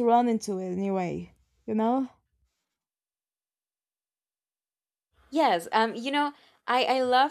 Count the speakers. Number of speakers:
2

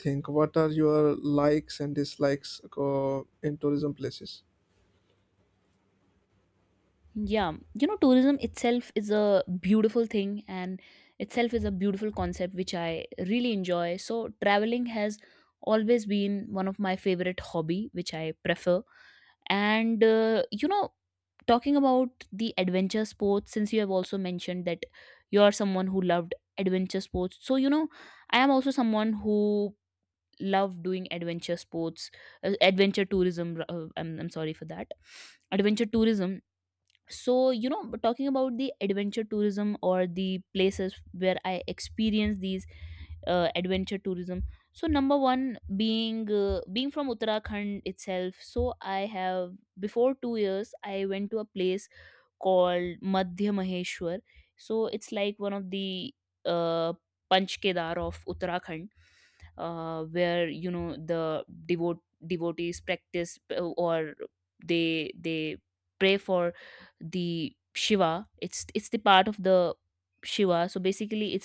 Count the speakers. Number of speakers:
2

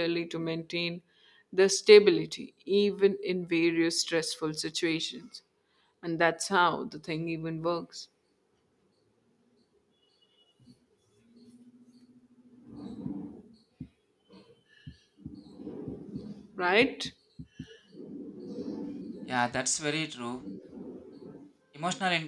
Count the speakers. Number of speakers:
2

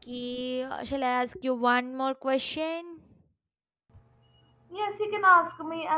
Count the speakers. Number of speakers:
2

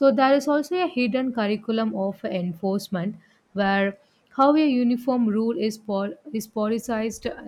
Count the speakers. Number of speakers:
1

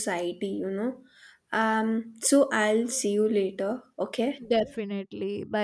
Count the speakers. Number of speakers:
2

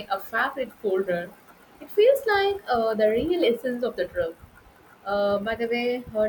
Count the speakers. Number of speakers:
1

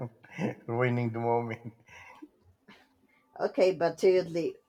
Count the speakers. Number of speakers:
2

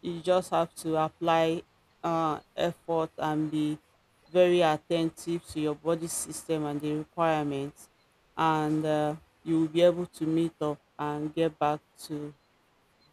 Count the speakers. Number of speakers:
1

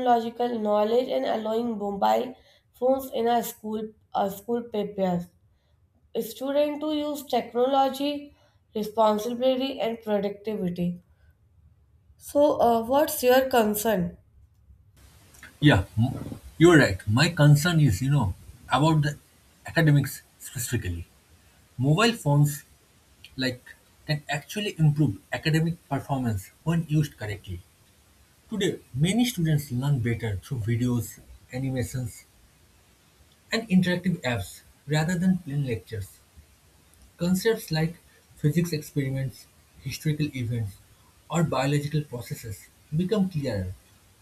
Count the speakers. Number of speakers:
2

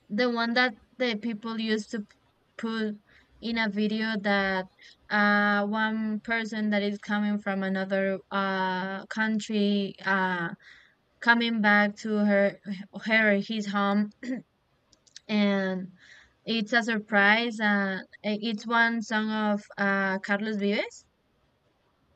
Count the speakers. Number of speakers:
1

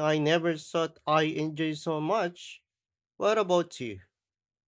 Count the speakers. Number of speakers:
1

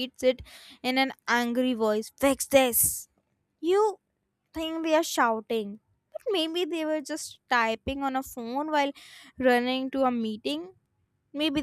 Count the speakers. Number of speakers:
1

